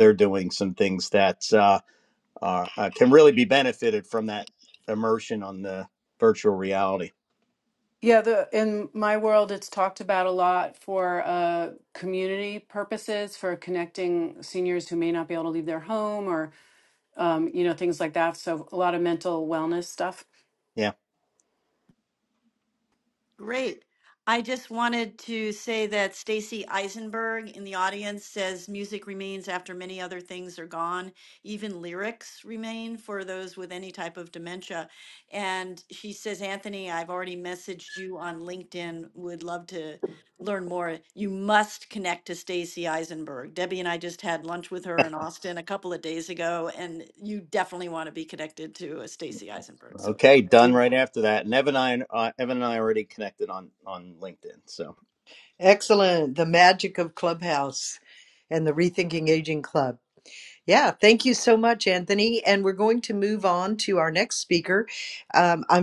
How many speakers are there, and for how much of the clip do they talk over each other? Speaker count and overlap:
4, about 1%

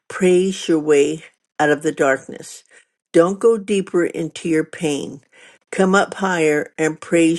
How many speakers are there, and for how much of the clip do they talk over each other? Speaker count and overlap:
1, no overlap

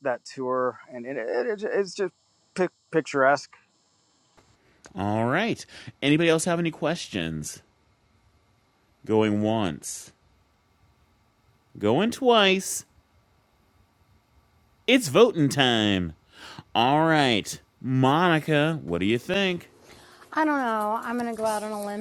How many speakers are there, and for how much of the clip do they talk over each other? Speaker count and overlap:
3, no overlap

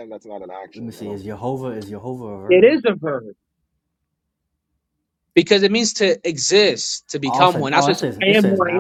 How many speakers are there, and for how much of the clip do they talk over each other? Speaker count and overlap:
3, about 26%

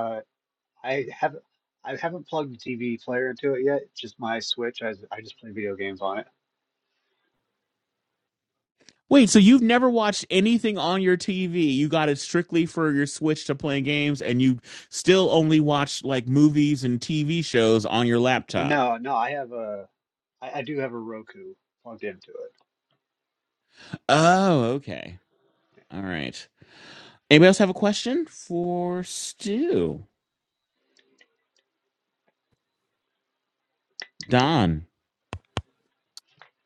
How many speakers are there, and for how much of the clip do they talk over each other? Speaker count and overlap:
2, about 1%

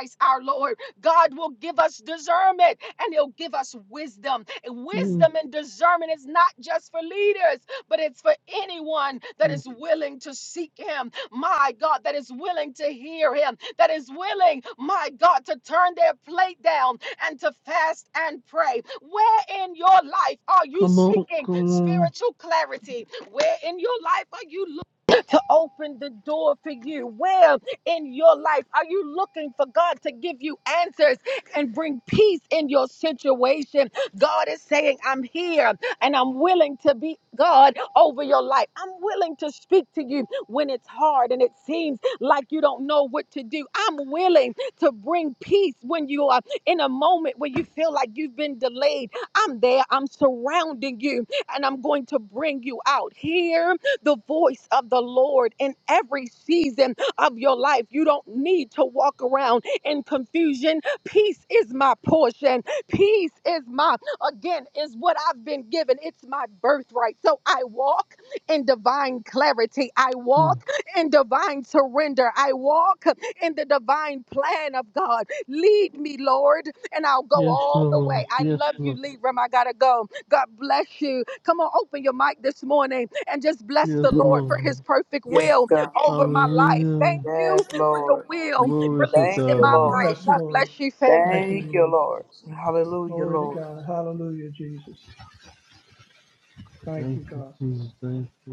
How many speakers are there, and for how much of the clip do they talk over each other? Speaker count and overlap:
4, about 11%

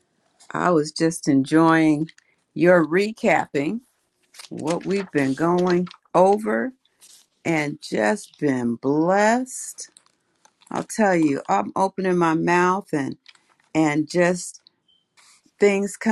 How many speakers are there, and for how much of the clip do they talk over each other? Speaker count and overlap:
1, no overlap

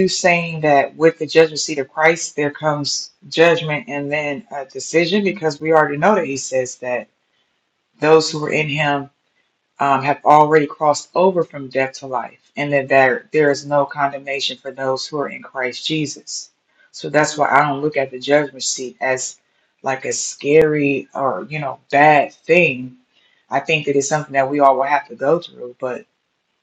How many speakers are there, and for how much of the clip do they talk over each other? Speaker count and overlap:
1, no overlap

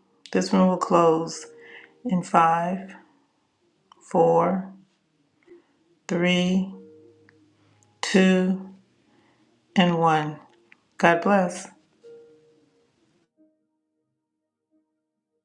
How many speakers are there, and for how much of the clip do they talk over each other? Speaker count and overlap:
1, no overlap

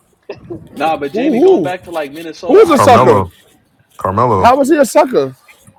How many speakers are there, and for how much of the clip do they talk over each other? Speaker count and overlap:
3, about 25%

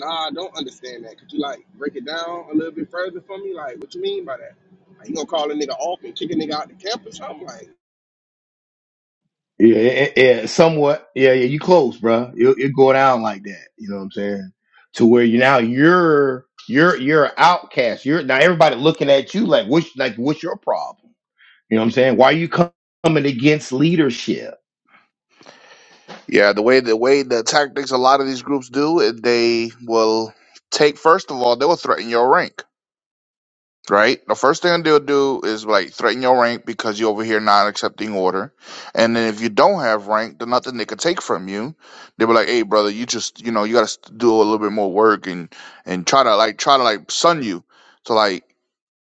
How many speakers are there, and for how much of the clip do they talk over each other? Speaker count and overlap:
3, no overlap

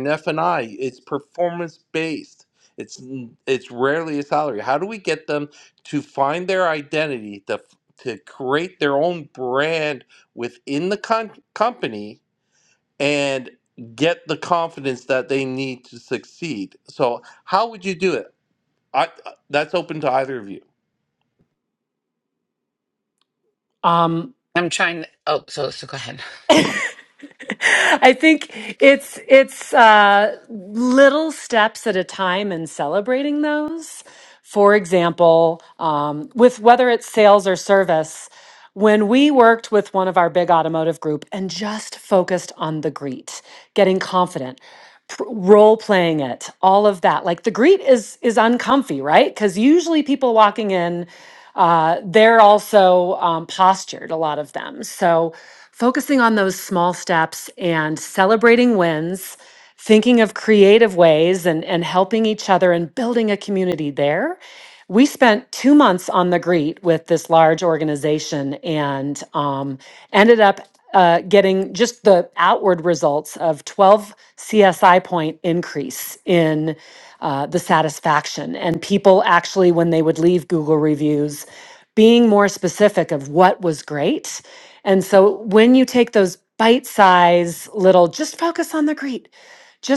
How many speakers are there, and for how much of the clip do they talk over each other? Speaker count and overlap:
3, no overlap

